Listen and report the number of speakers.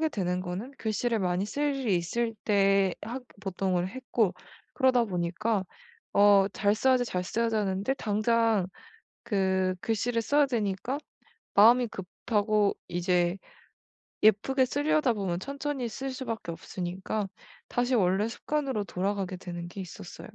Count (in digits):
1